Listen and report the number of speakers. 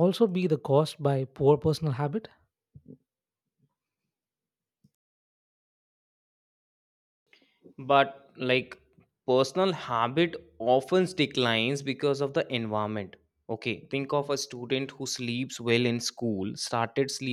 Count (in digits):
2